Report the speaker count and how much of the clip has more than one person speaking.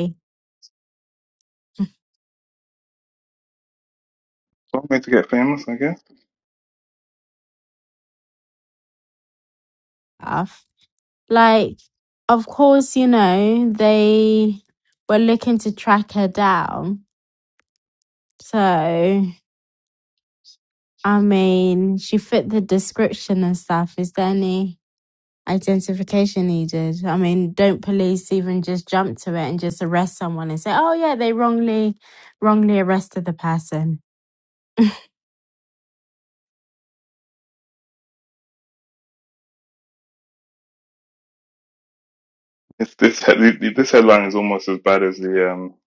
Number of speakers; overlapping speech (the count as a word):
two, no overlap